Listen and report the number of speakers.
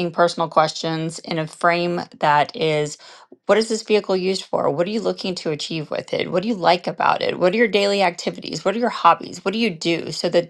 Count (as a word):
one